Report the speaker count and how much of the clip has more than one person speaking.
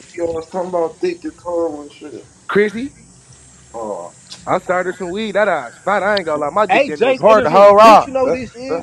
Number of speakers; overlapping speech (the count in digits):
3, about 18%